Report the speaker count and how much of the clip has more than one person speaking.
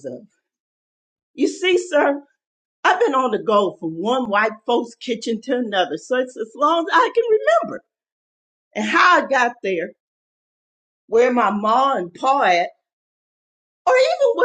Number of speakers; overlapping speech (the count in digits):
1, no overlap